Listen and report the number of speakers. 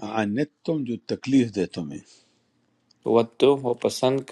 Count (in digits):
2